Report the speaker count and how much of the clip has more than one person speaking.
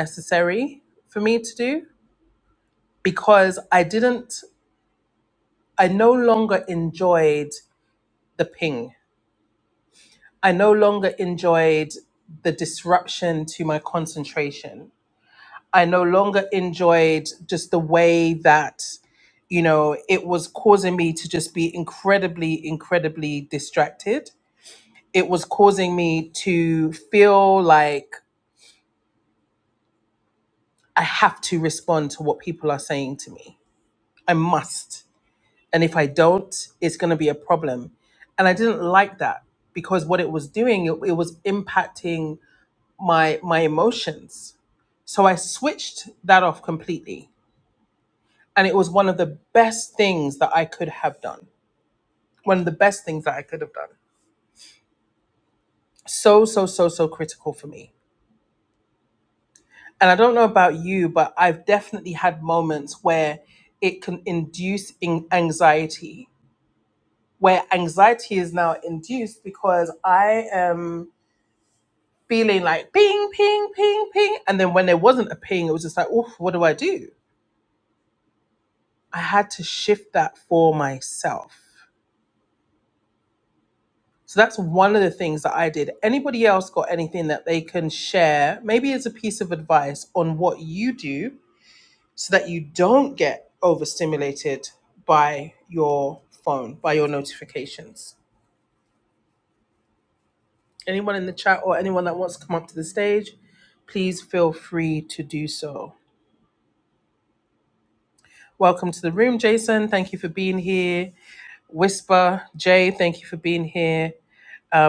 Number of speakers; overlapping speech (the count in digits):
1, no overlap